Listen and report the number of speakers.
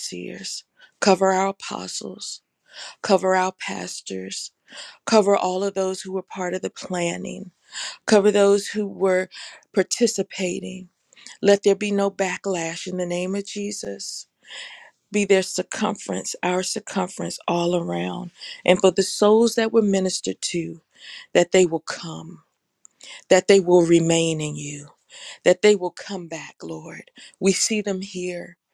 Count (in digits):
1